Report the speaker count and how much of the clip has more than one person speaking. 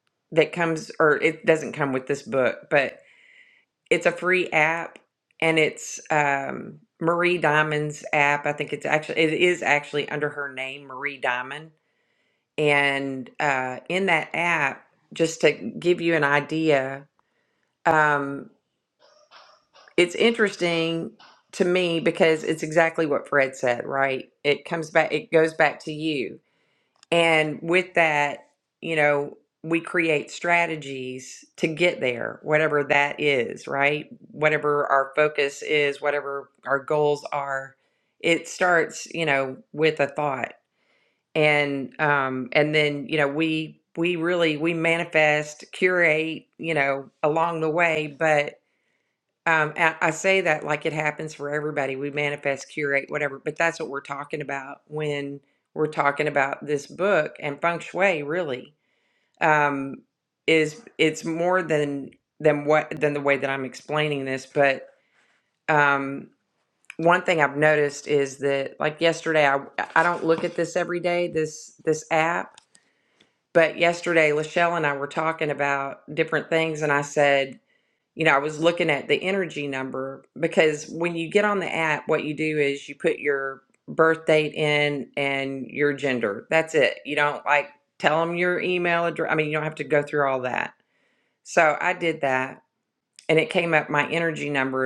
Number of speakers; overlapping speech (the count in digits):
1, no overlap